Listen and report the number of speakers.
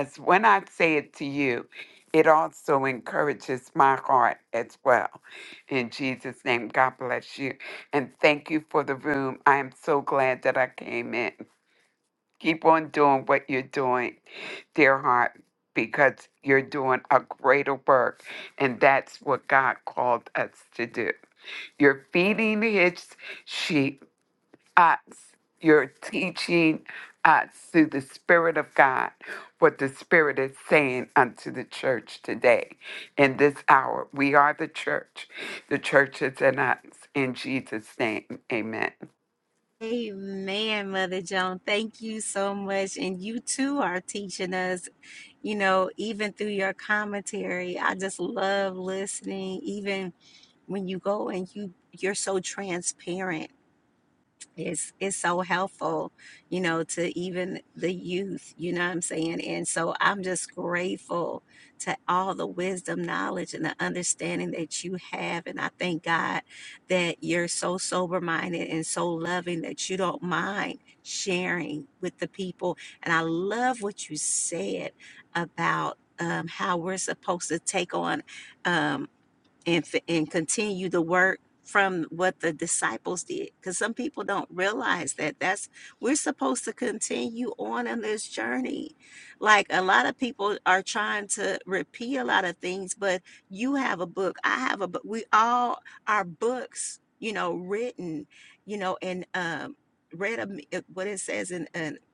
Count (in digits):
2